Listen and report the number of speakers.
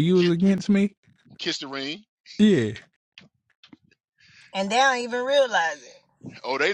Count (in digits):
3